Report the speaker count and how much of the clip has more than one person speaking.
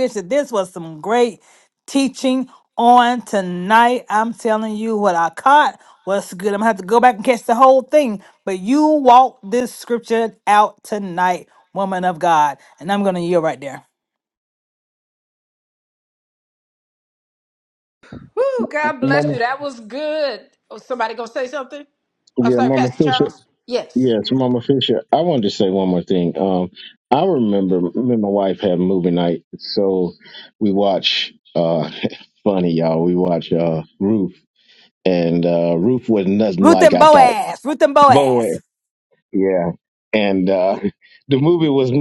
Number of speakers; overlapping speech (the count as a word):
three, about 6%